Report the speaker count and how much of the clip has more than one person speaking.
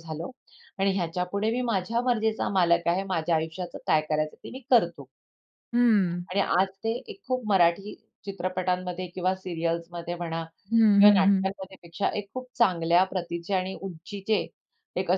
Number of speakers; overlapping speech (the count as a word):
two, about 3%